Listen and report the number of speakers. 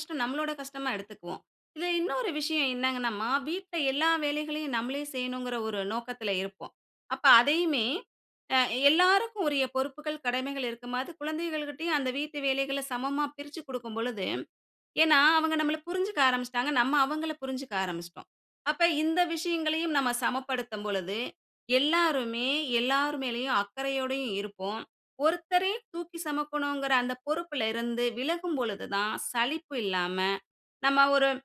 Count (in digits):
1